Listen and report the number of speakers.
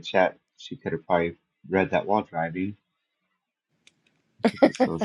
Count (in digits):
1